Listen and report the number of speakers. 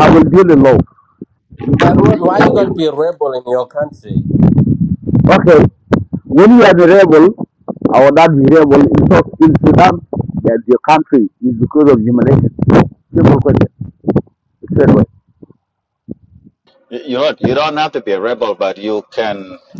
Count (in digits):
3